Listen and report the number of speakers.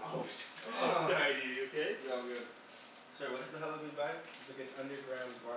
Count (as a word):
three